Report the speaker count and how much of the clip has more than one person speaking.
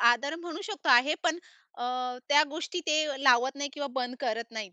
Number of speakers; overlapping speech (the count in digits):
1, no overlap